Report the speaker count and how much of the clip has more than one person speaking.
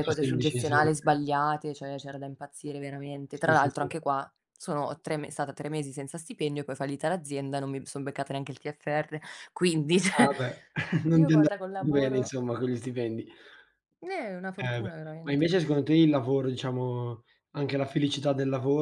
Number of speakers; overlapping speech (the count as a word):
two, about 17%